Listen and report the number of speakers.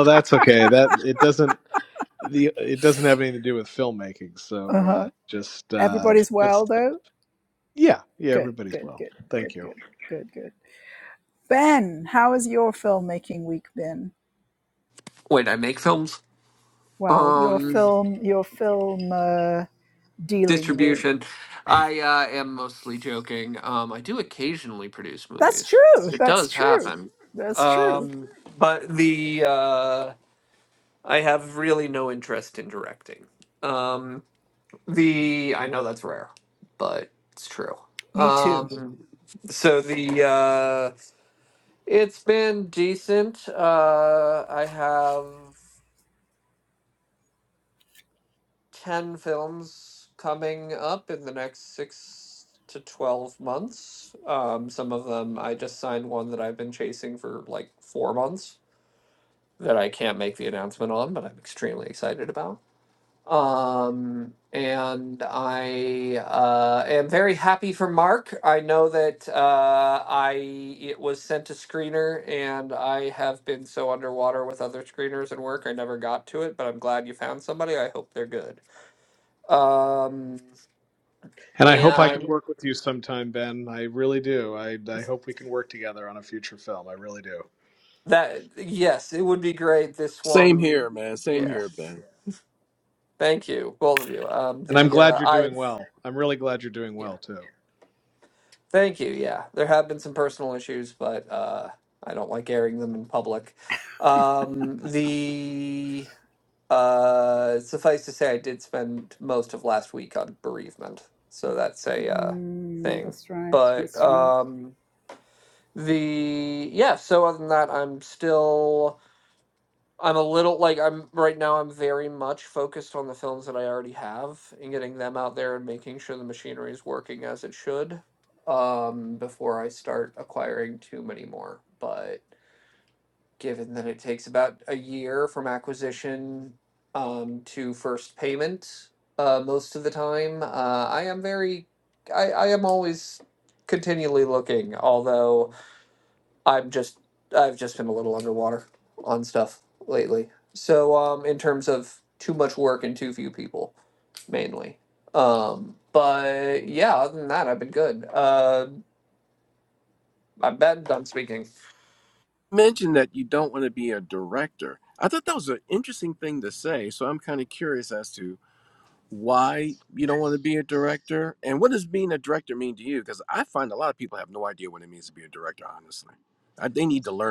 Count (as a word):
four